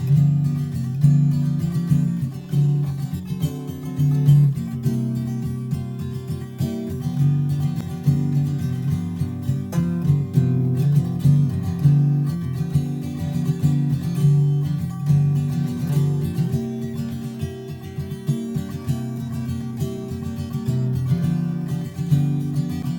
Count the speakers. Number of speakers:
zero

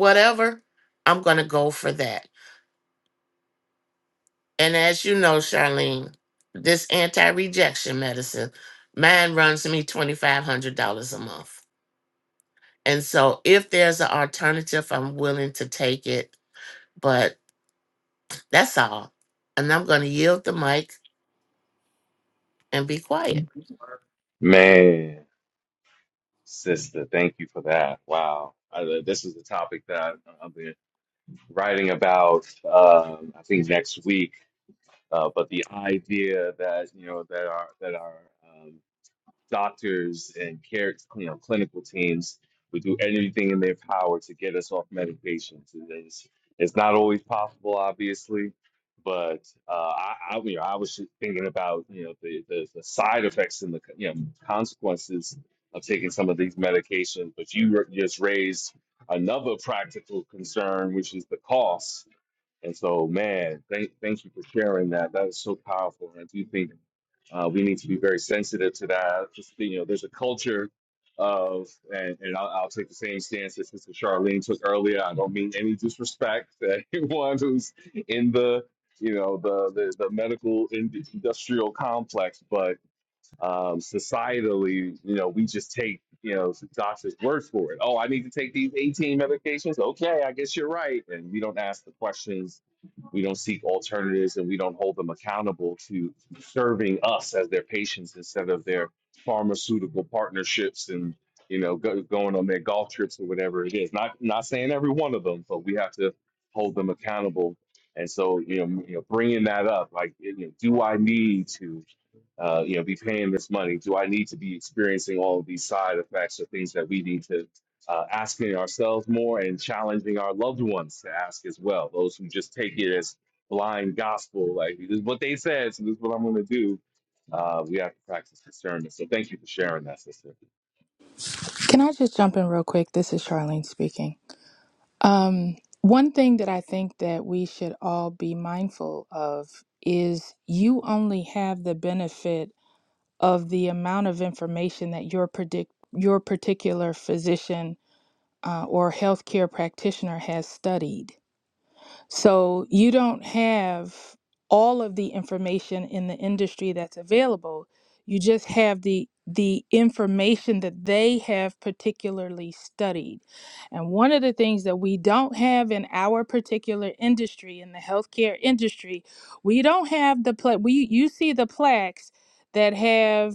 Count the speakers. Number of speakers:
three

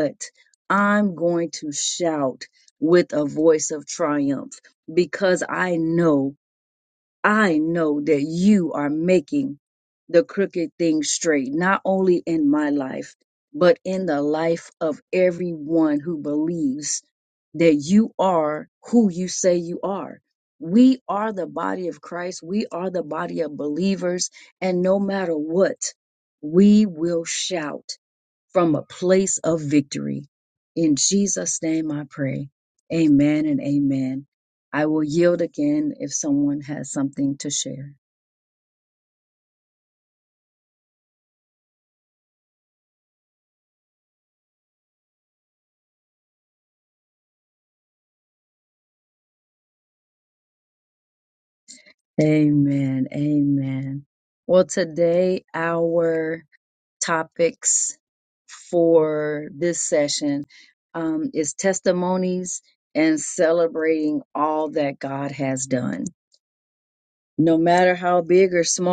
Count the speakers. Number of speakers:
one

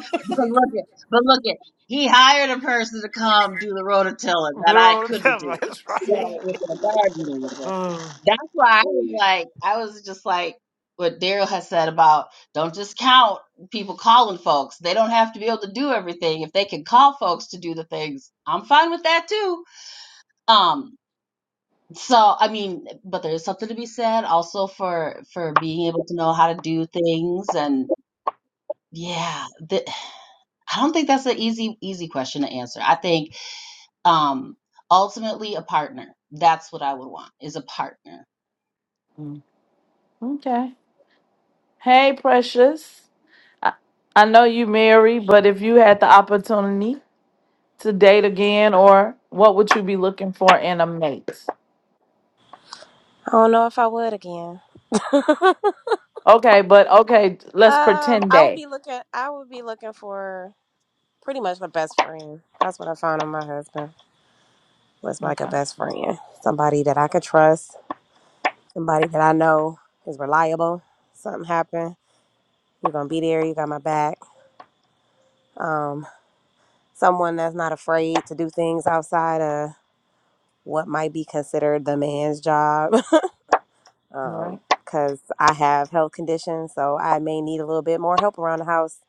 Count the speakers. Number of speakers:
four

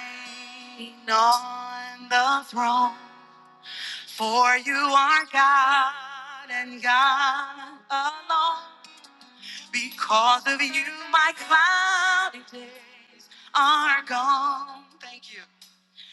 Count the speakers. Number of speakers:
one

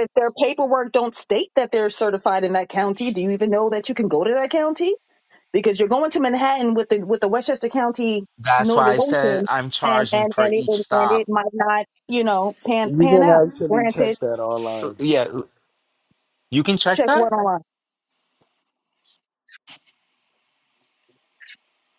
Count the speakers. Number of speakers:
three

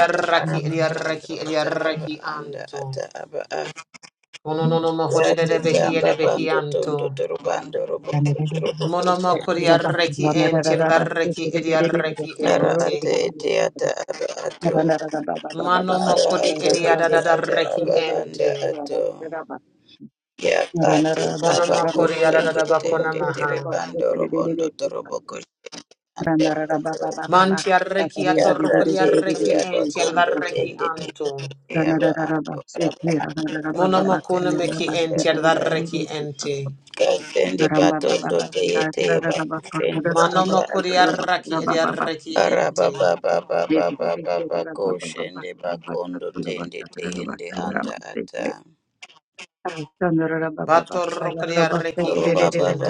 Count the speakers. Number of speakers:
three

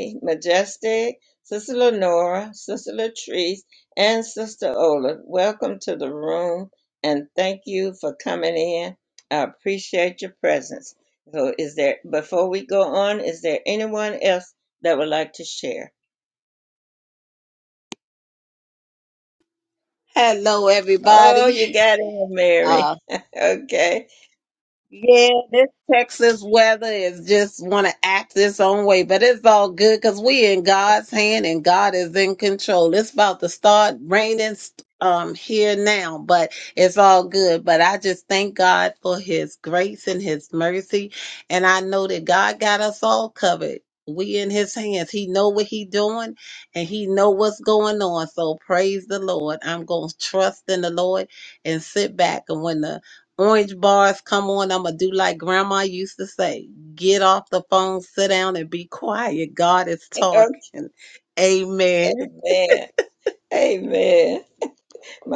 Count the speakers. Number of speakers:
two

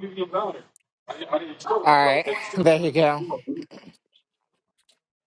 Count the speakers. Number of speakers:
two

